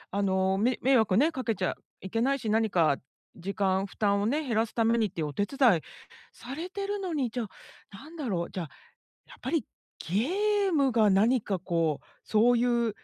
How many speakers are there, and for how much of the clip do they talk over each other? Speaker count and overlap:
one, no overlap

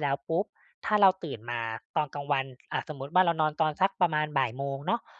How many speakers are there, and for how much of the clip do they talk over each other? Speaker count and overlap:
one, no overlap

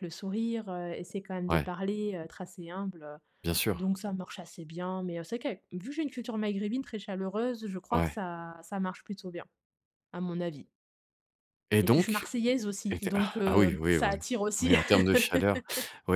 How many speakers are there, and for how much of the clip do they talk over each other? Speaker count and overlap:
two, about 16%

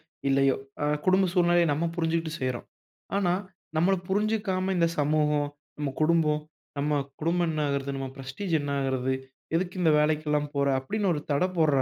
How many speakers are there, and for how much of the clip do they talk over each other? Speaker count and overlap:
one, no overlap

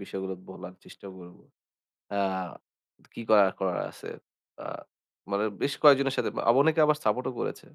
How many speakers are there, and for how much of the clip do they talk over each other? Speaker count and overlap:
one, no overlap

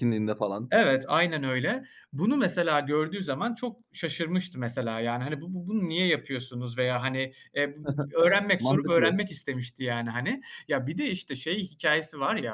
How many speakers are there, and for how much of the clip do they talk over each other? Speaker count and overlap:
two, about 5%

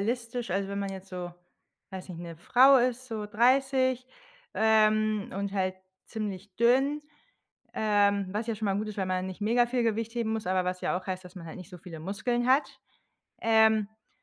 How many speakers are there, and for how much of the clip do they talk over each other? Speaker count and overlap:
one, no overlap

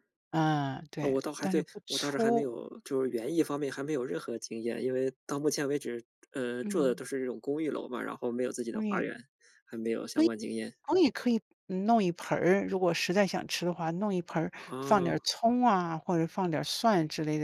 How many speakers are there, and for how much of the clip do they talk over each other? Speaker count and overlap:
two, about 16%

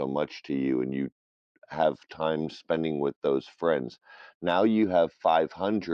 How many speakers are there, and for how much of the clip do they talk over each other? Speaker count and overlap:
one, no overlap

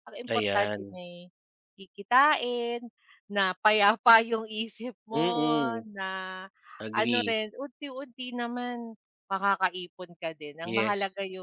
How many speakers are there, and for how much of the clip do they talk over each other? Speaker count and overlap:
two, about 14%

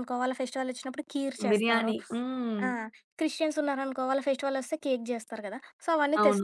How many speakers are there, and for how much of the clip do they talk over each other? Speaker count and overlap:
two, about 13%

